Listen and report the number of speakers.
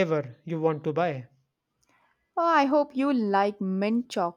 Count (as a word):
two